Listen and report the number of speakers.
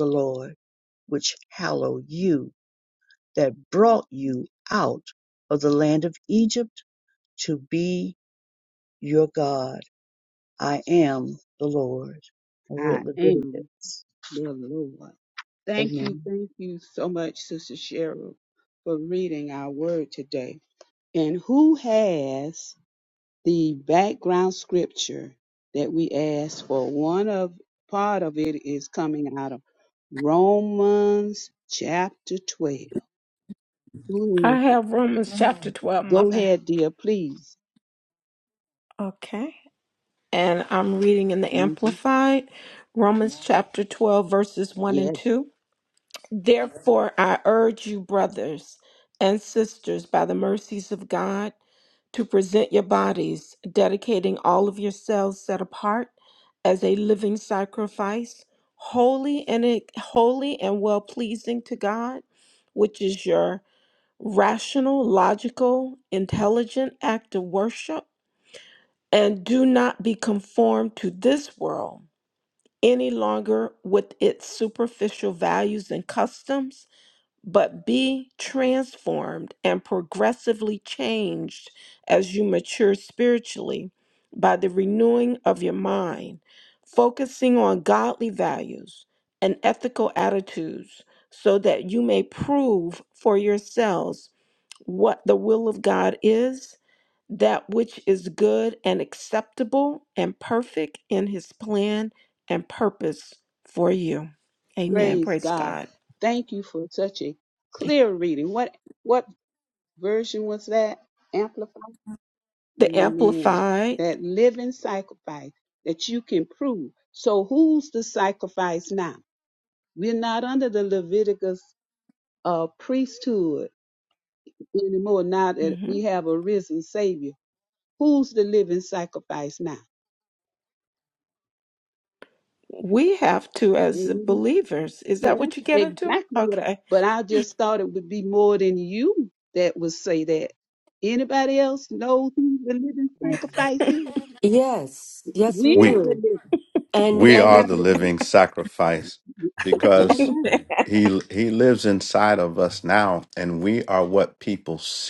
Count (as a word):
five